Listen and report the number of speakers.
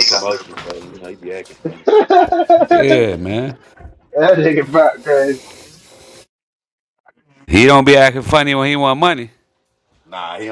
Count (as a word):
three